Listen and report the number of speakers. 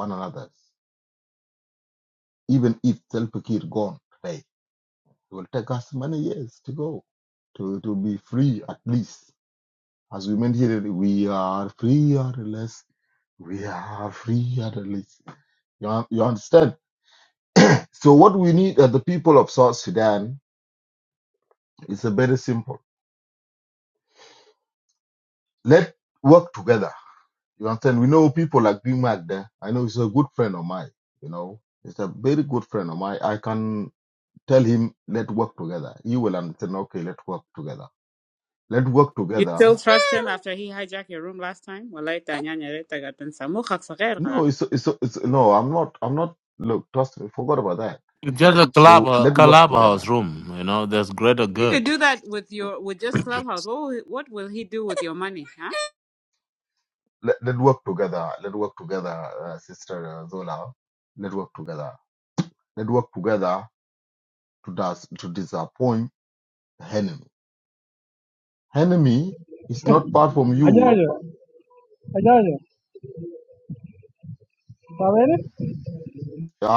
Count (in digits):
4